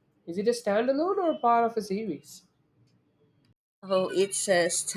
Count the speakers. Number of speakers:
two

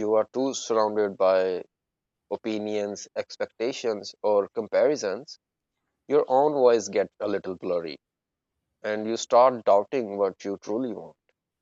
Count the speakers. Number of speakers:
one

